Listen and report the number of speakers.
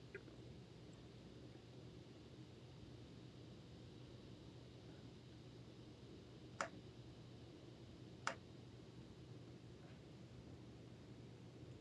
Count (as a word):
zero